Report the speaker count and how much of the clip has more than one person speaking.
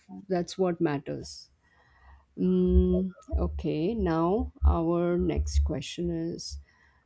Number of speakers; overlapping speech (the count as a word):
one, no overlap